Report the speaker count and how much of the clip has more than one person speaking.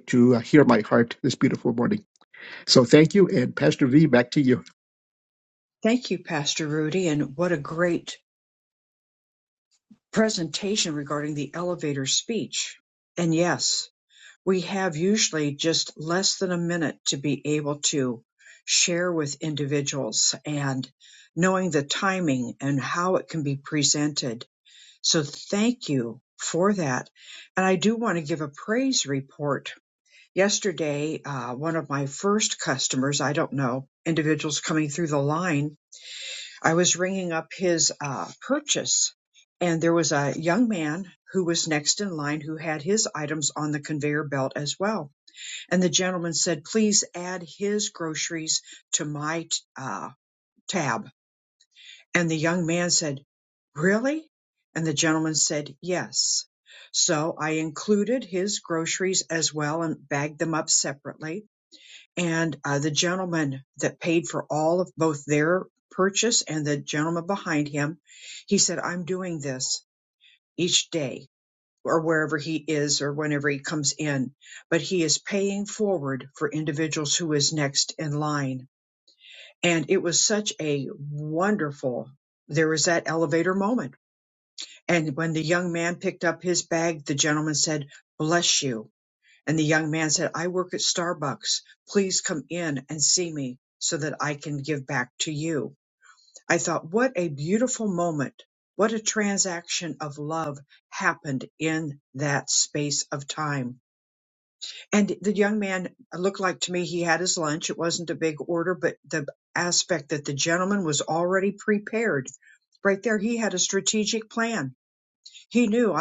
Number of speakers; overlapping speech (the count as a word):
two, no overlap